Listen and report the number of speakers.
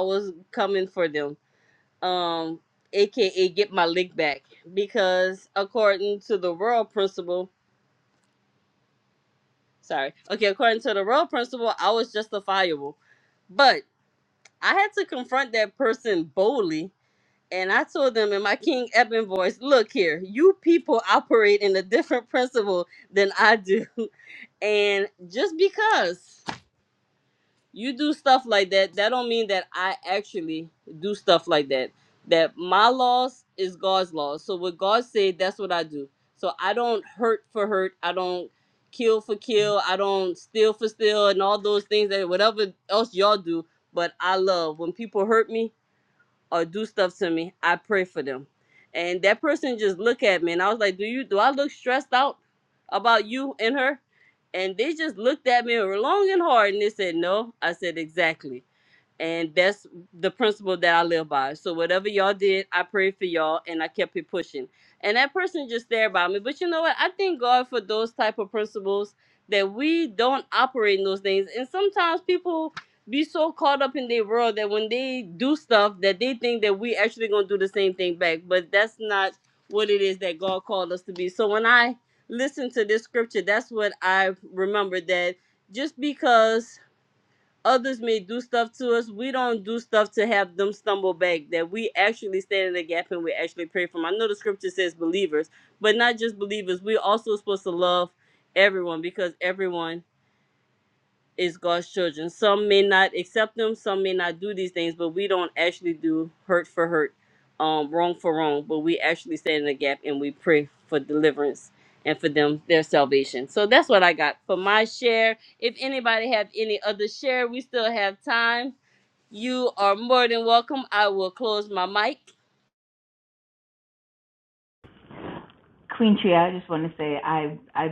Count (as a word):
two